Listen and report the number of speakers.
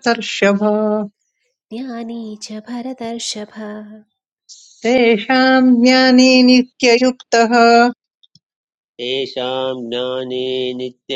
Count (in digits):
3